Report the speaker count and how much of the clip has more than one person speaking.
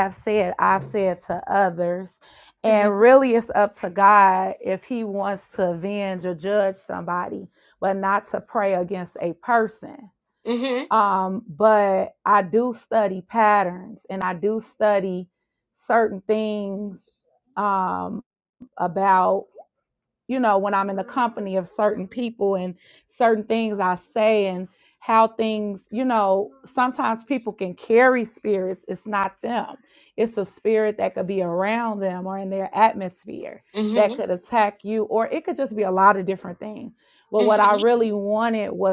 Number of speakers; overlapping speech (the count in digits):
2, about 2%